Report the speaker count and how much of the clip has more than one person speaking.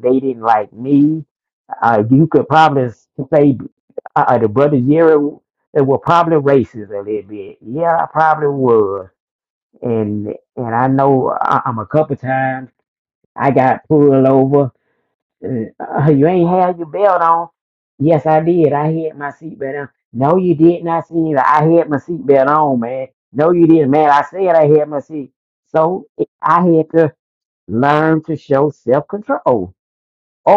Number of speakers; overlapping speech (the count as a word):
one, no overlap